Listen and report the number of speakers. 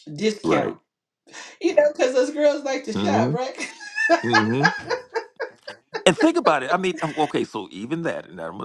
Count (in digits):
2